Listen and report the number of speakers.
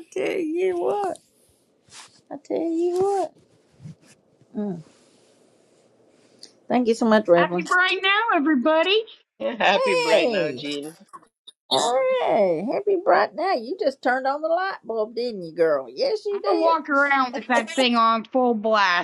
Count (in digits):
3